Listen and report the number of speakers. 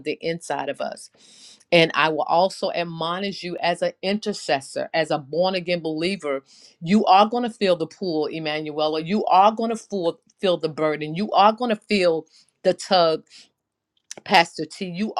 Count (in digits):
1